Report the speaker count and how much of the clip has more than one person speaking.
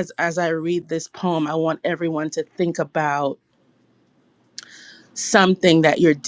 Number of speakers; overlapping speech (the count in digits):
1, no overlap